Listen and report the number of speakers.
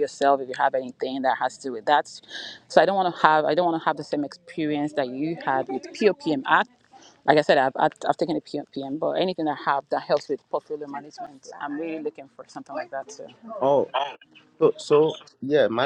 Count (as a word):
two